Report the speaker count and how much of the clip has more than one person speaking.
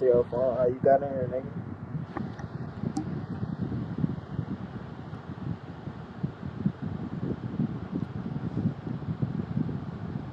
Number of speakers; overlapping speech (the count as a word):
one, no overlap